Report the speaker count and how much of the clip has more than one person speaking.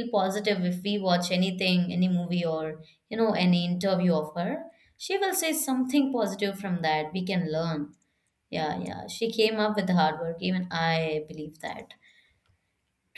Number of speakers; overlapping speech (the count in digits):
1, no overlap